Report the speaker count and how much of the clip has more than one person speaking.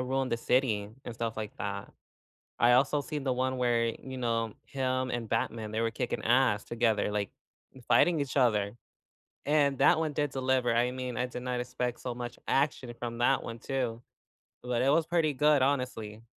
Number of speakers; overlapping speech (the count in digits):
1, no overlap